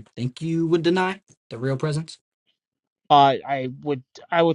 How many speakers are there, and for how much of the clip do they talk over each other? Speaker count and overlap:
2, no overlap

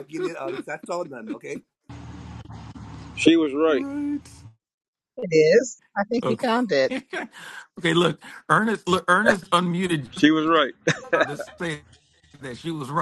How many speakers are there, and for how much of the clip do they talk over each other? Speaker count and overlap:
4, about 4%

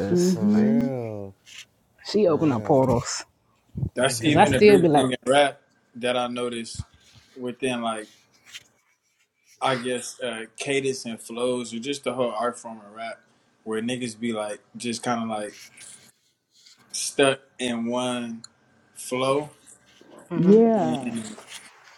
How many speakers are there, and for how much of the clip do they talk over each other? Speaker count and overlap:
4, about 11%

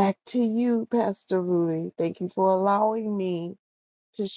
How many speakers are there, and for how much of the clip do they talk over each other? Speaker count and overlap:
1, no overlap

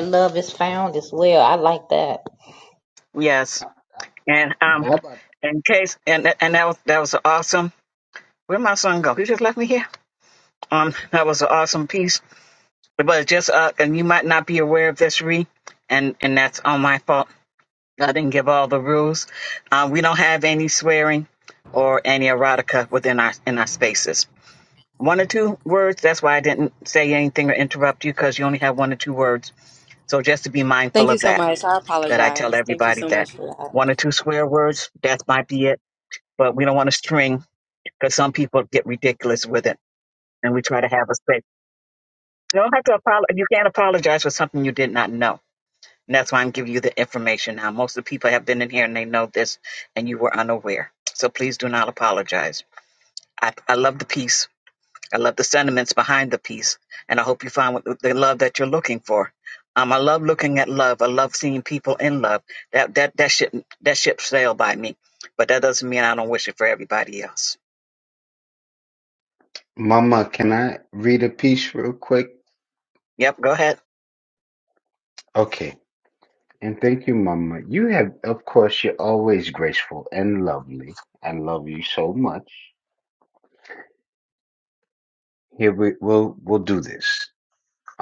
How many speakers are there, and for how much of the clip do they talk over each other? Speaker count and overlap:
4, about 2%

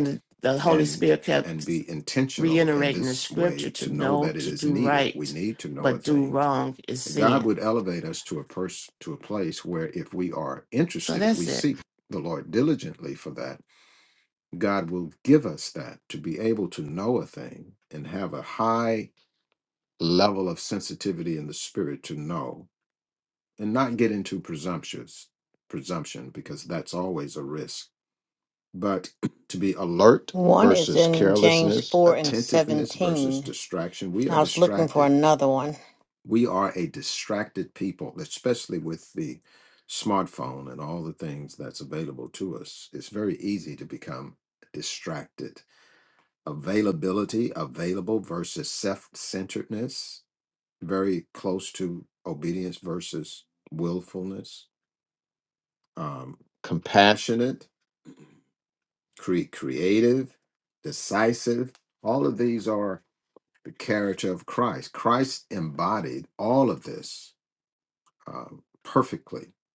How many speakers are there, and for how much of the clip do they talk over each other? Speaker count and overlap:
3, about 13%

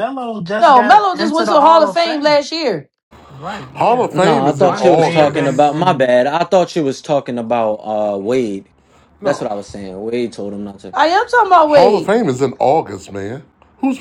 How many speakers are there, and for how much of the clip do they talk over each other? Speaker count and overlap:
4, about 34%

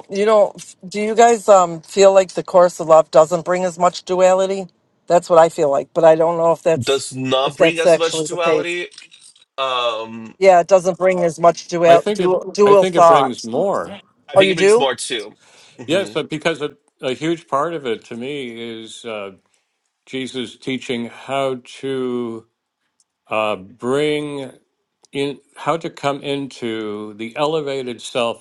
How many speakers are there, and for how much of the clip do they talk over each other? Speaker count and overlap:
3, about 12%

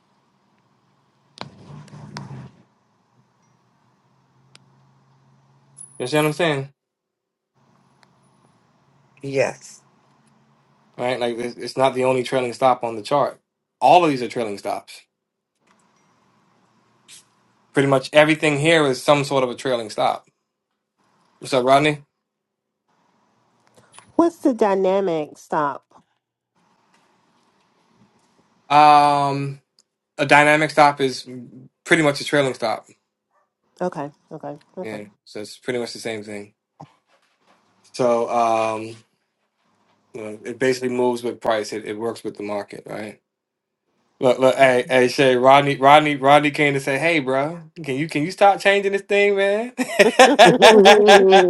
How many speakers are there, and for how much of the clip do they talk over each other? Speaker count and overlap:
3, about 1%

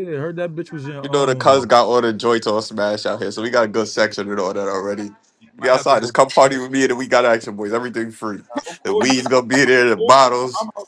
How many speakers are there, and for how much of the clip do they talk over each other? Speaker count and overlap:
2, about 19%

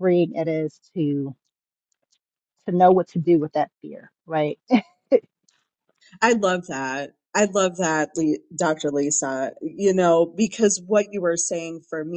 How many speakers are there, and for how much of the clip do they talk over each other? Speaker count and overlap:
2, no overlap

